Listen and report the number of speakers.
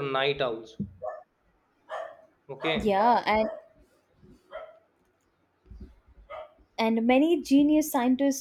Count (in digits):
2